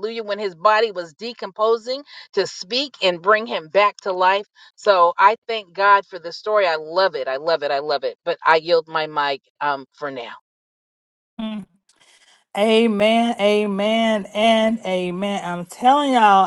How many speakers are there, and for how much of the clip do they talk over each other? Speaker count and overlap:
2, no overlap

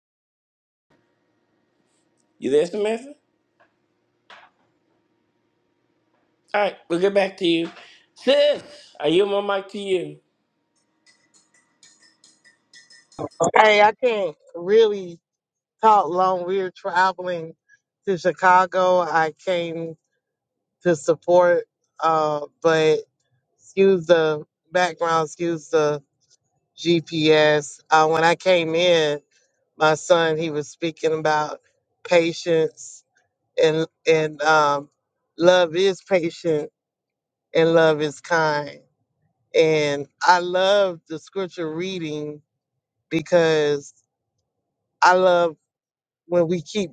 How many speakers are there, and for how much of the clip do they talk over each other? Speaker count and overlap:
2, no overlap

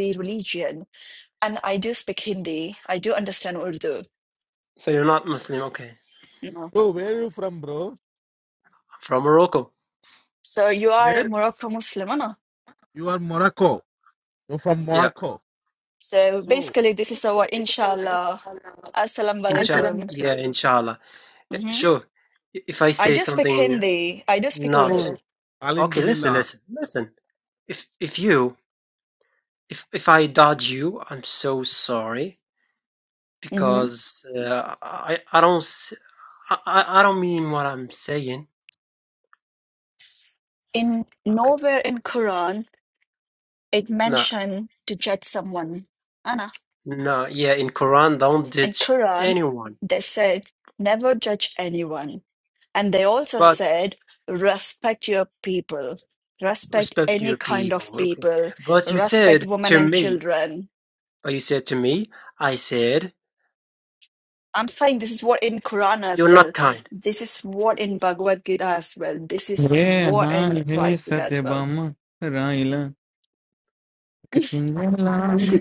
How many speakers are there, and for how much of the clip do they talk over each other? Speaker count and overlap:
4, about 14%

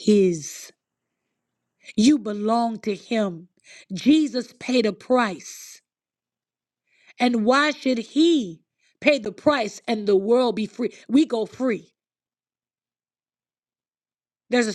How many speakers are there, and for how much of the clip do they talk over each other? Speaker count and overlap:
1, no overlap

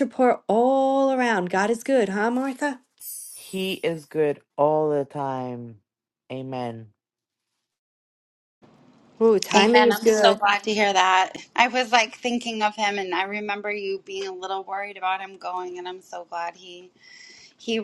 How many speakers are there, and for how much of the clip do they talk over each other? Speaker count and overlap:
3, about 5%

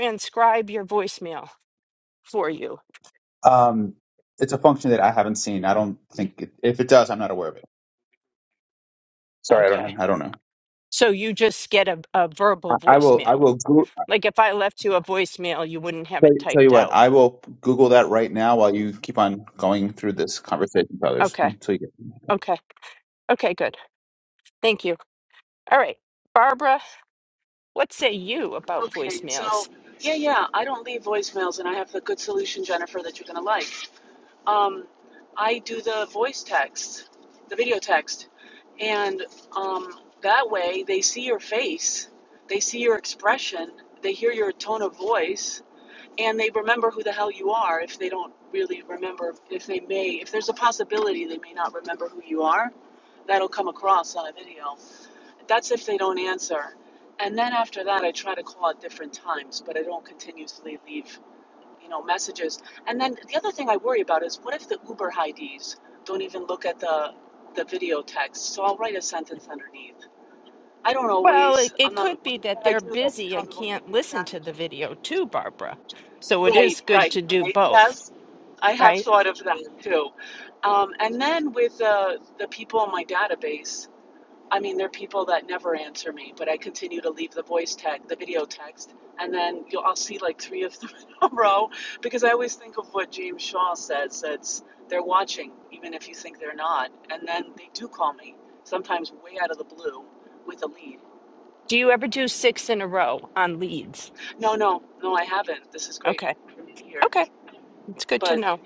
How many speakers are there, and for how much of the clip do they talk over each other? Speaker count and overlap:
3, about 8%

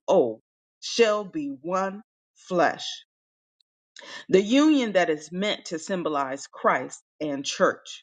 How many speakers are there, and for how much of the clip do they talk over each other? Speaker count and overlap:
1, no overlap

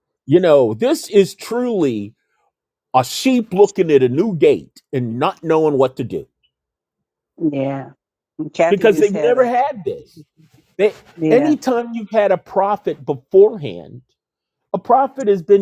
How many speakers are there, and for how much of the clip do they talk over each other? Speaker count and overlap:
2, about 7%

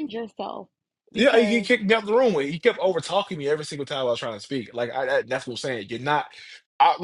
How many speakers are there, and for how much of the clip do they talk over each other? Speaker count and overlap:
2, about 7%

